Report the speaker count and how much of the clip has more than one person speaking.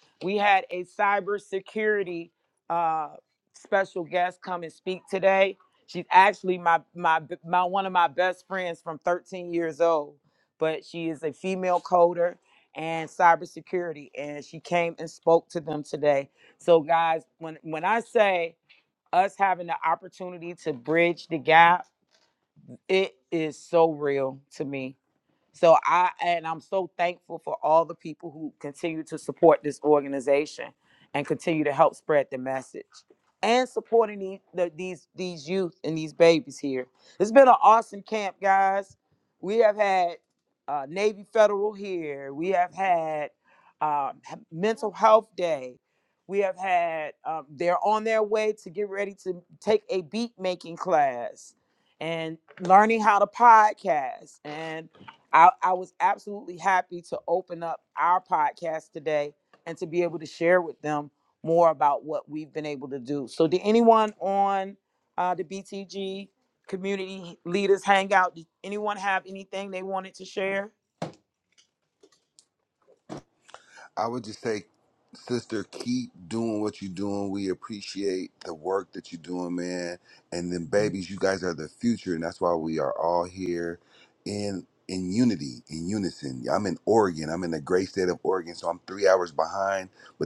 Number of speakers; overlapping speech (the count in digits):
2, no overlap